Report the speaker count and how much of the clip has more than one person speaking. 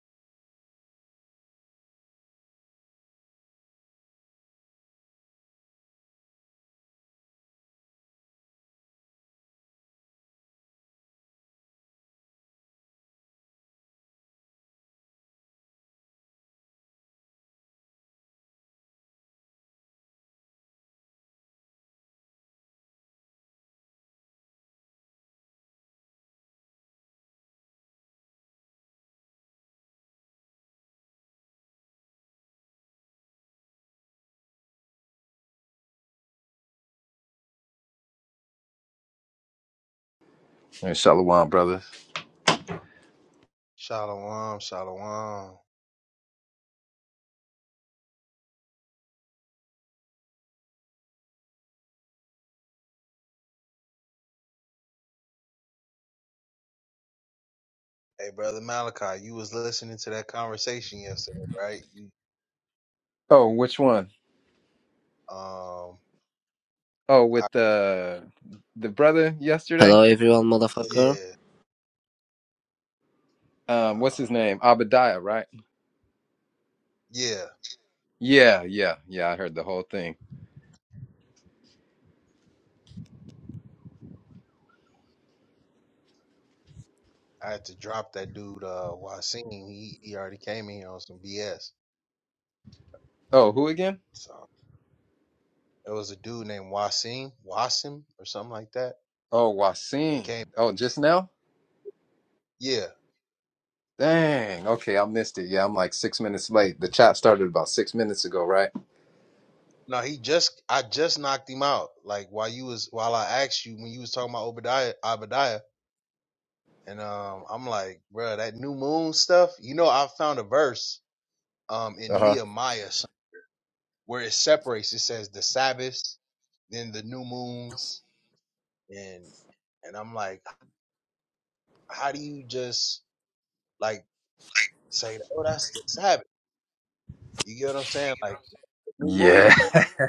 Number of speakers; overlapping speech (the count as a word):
three, about 1%